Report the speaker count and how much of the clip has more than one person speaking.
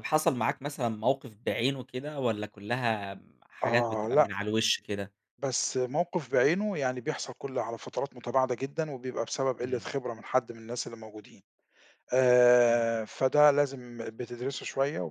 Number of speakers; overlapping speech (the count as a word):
two, about 6%